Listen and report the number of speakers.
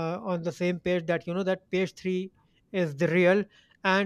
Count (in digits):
1